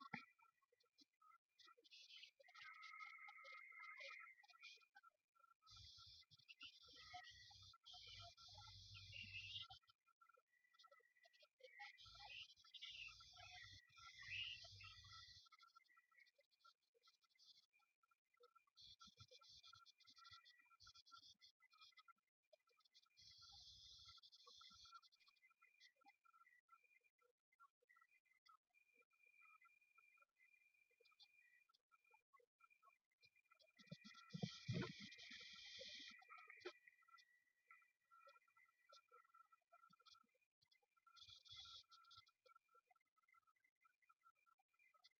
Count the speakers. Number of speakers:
0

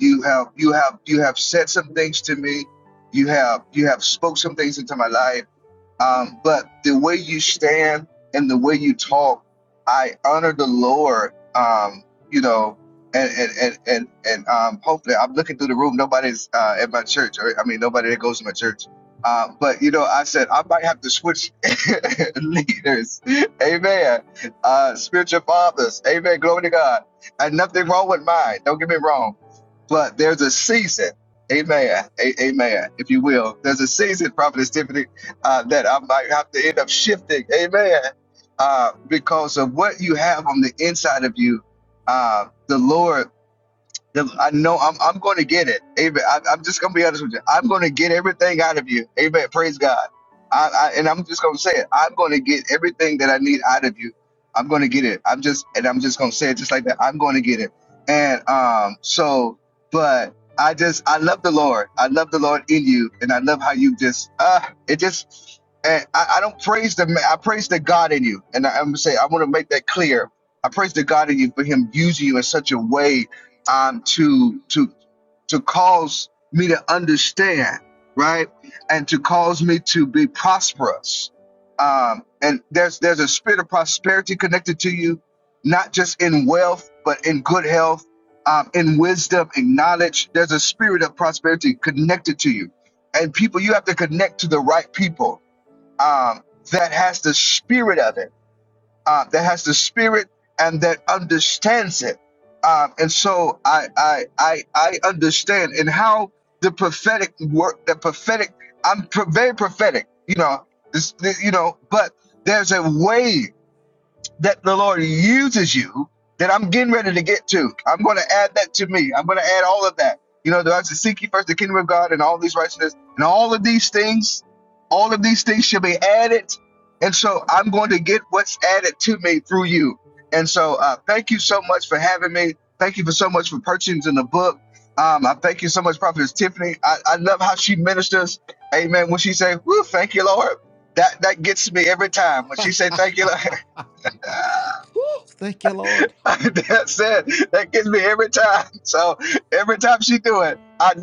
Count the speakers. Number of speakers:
2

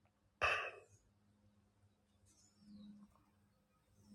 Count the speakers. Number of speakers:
0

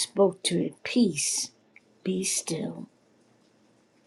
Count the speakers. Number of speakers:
1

